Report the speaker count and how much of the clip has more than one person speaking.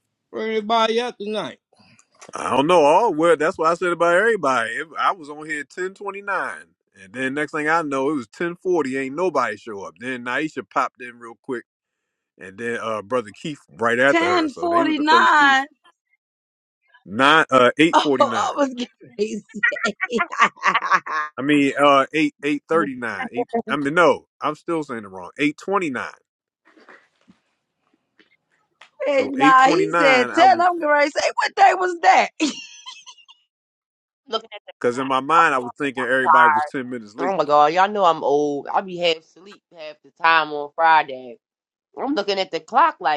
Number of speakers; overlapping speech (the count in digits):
4, about 10%